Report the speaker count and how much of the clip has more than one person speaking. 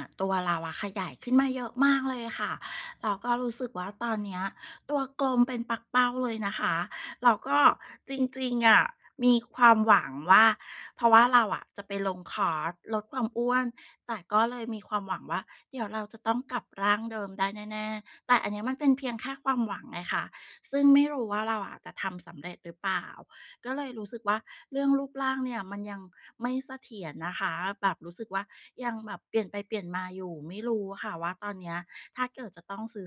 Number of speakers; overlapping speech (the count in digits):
1, no overlap